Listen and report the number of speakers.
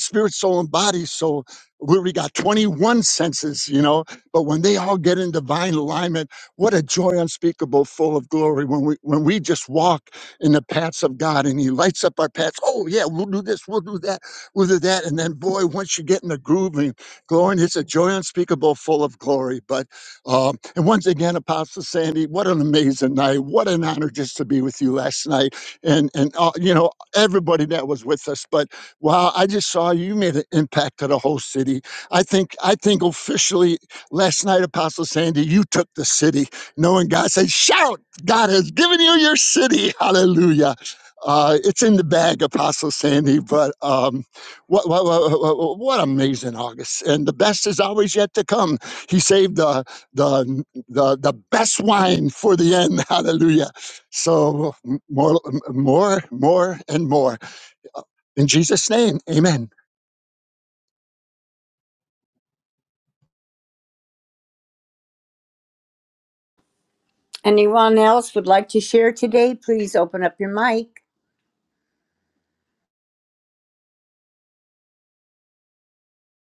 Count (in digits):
2